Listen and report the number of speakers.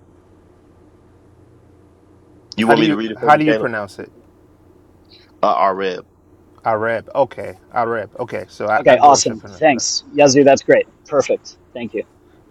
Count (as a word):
three